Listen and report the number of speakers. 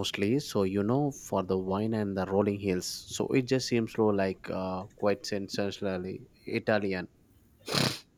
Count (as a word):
one